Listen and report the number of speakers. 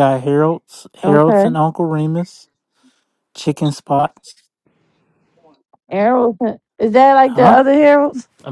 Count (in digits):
2